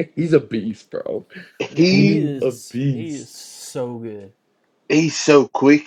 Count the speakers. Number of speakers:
three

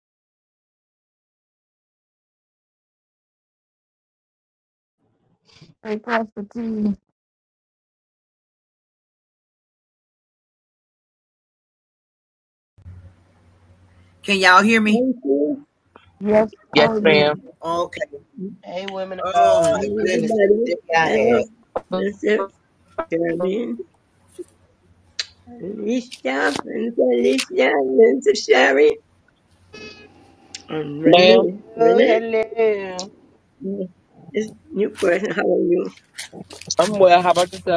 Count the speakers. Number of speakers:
five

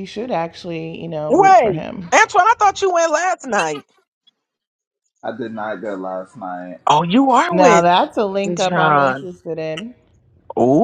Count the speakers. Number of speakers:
three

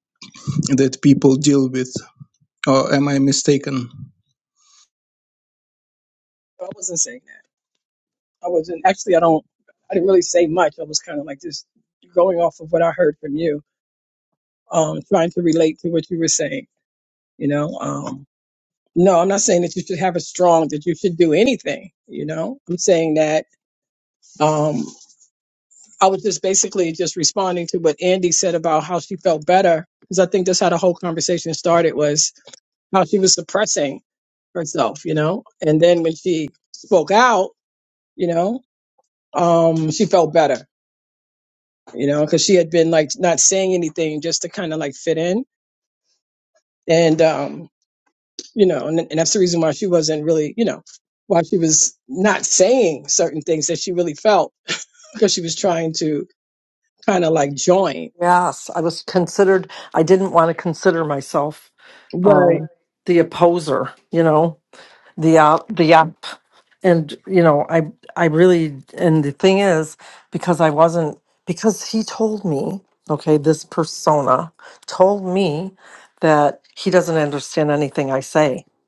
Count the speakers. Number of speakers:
three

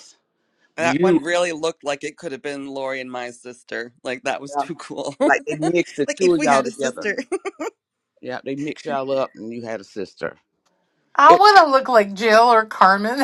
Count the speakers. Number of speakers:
three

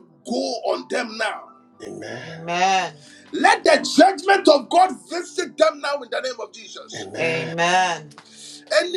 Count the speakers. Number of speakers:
three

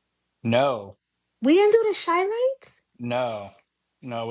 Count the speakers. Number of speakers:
two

